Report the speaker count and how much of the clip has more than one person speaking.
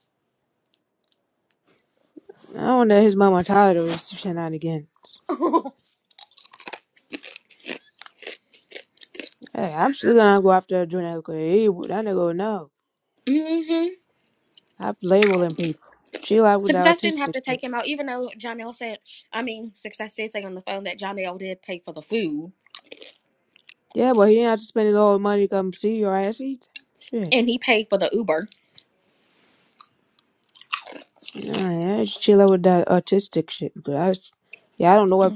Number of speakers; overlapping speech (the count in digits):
2, about 3%